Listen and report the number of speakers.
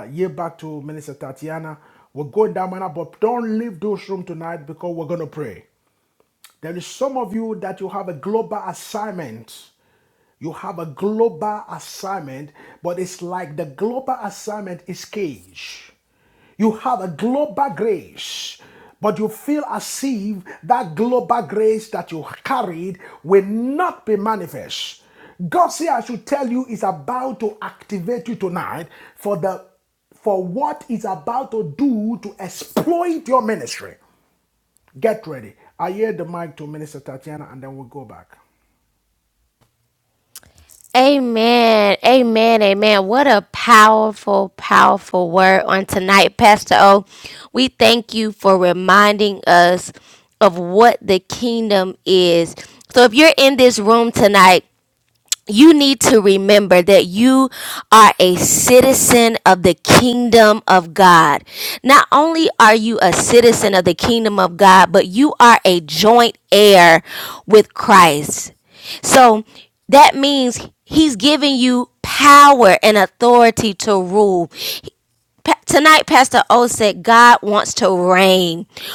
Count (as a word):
two